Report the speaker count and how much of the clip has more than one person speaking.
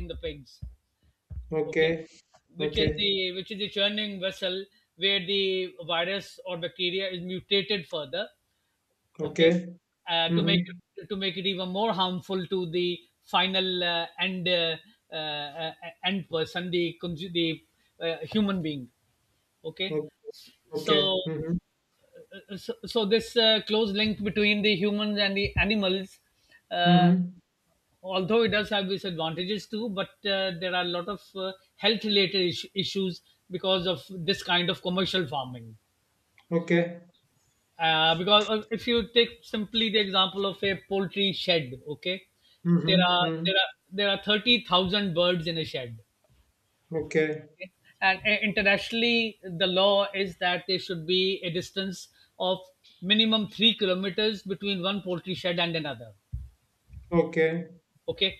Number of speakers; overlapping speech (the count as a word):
two, about 5%